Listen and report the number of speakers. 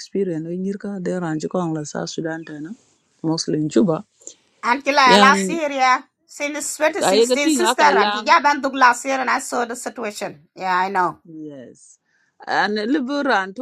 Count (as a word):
two